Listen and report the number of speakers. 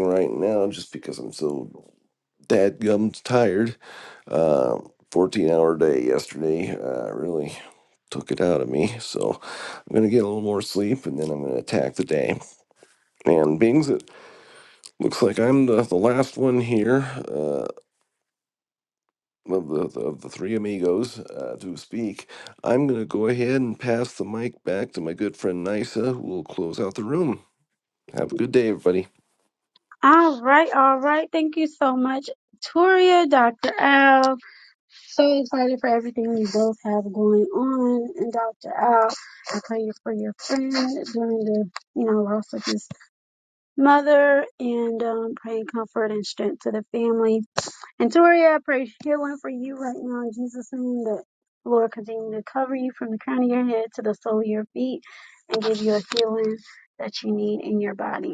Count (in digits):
2